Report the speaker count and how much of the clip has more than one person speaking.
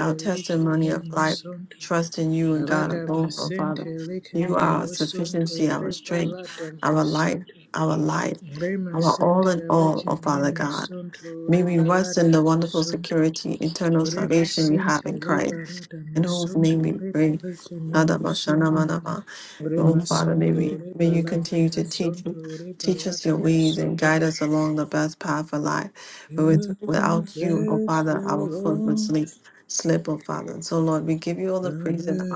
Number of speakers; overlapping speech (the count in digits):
2, about 60%